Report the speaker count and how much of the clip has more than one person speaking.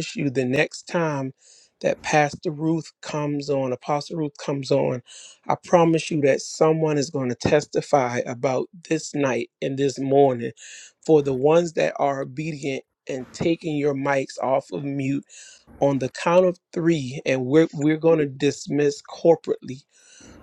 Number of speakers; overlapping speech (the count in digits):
1, no overlap